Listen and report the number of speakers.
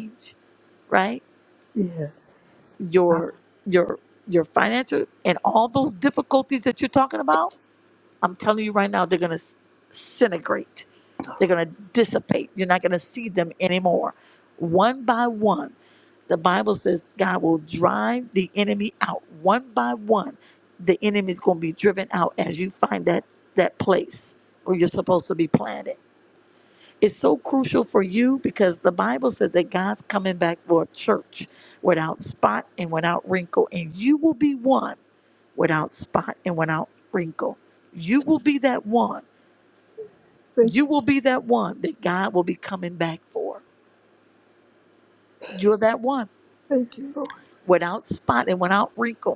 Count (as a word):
two